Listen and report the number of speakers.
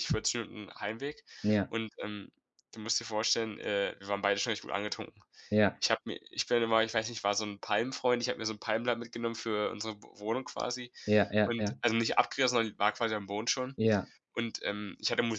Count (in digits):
2